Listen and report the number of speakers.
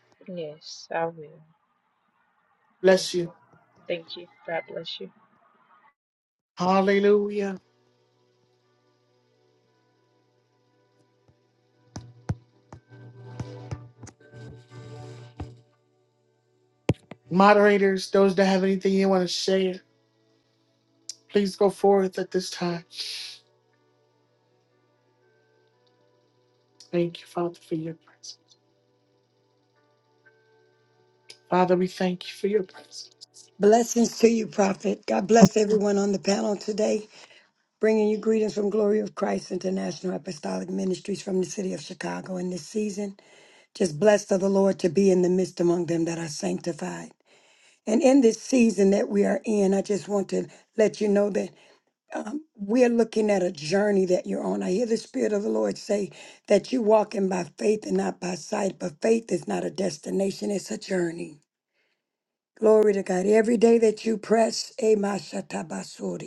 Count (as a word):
three